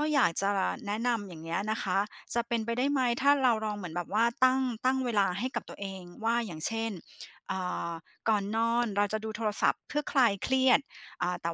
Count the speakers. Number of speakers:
1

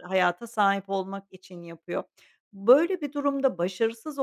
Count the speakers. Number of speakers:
1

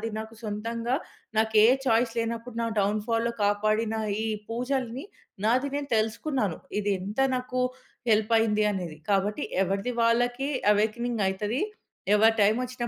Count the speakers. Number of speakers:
1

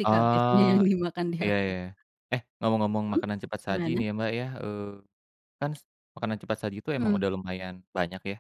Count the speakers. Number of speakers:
2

